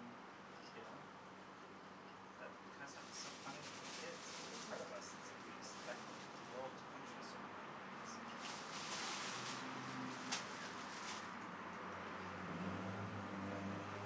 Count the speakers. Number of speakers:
1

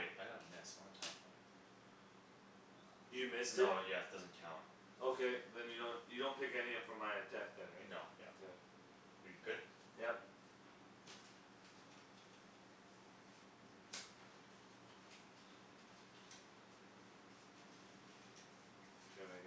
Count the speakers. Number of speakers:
2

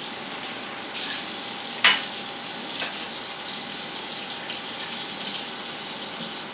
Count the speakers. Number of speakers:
0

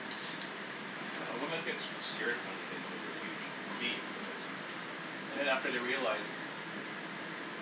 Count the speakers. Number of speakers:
1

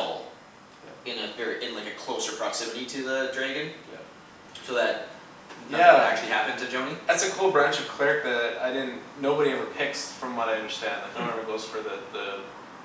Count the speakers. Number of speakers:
2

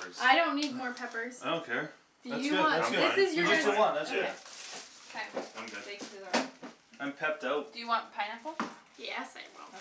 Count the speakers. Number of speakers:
4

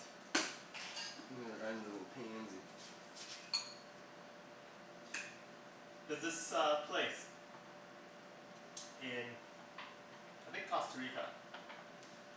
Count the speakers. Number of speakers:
2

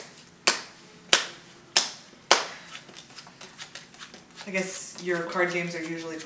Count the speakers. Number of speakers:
1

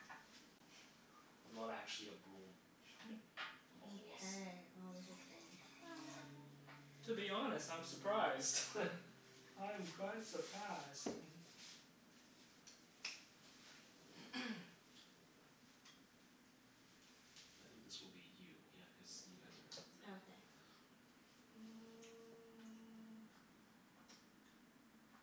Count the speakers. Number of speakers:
3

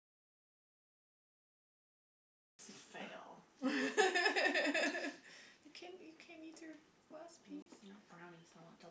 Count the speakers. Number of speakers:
2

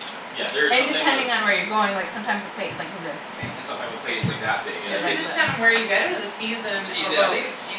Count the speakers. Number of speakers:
3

